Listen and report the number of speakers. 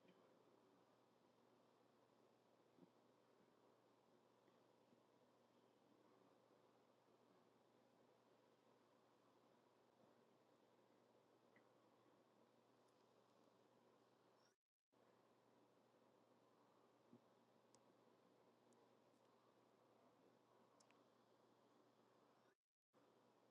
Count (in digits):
0